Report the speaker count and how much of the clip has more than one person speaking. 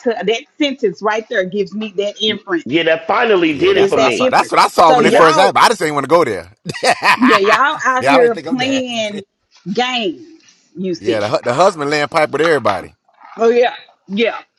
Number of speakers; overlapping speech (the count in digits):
3, about 23%